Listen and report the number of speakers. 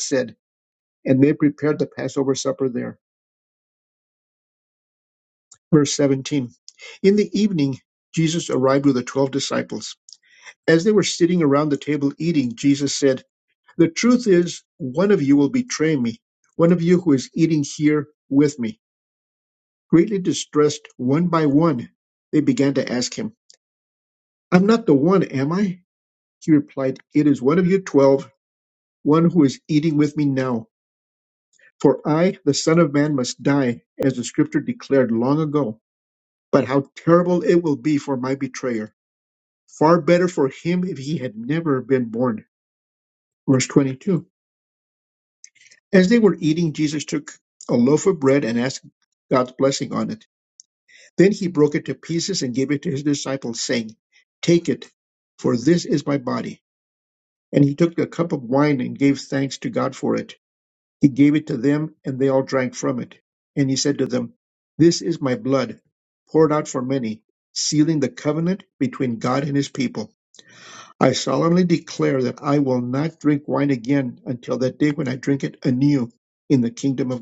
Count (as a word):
one